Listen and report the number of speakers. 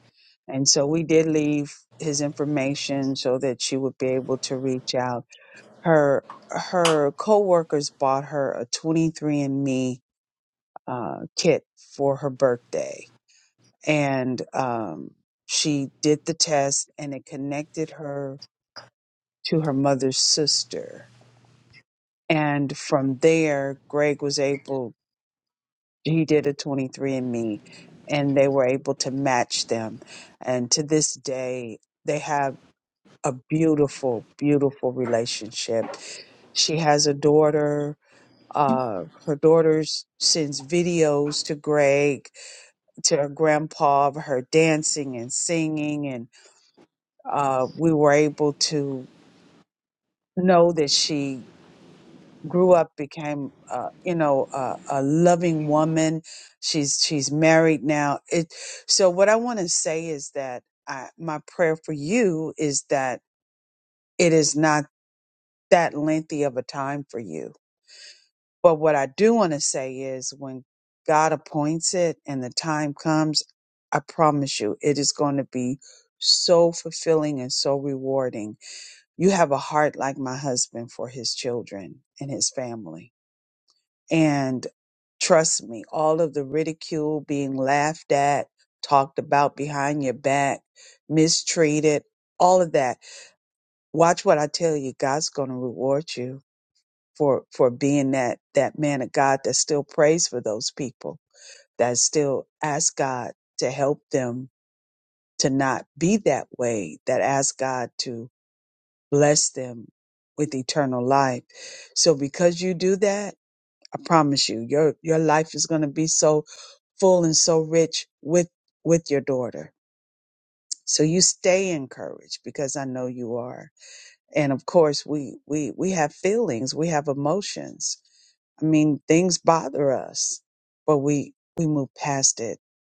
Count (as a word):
one